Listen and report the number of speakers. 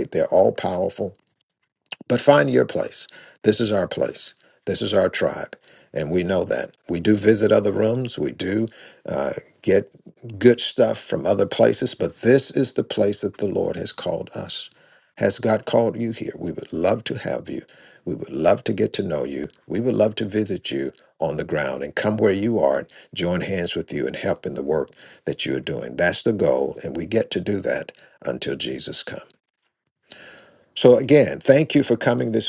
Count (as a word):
one